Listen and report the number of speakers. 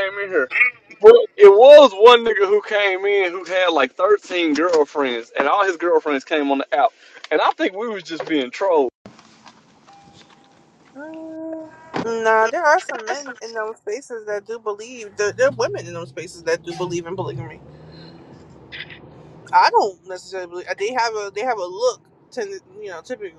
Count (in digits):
2